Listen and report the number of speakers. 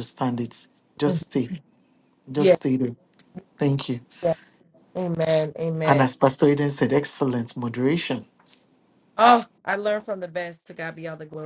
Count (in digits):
2